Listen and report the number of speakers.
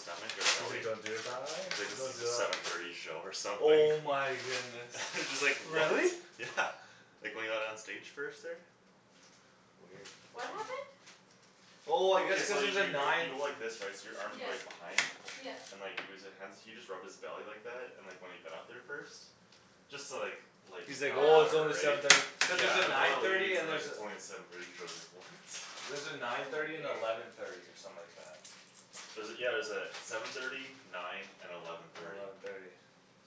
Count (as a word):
three